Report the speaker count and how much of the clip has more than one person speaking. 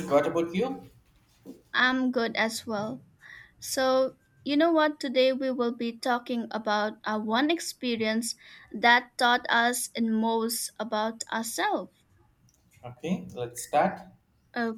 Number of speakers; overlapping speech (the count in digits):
2, no overlap